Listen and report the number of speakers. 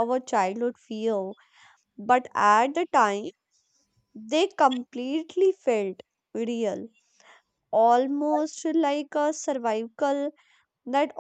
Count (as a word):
one